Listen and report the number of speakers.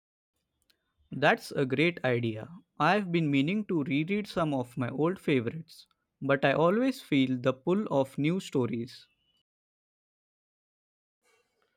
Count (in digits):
1